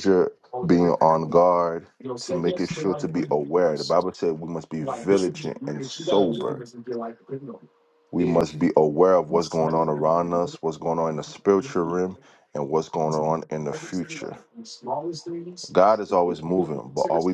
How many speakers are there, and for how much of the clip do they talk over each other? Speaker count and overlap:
two, about 50%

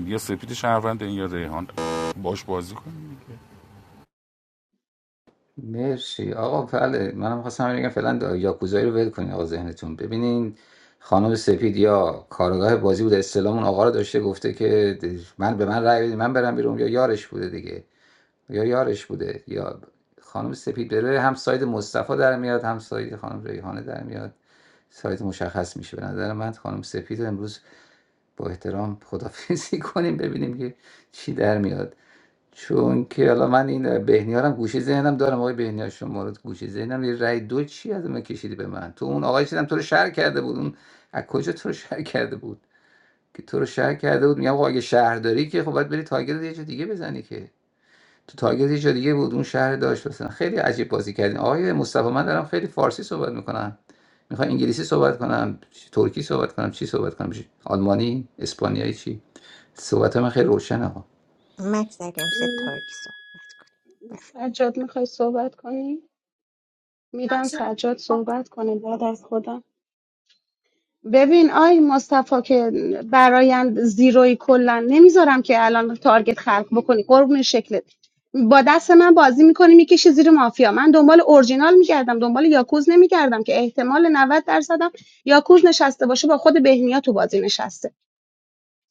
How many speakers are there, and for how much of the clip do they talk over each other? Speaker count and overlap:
four, under 1%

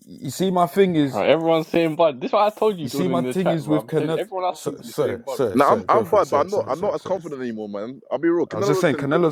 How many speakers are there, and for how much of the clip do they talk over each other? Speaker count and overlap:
three, about 49%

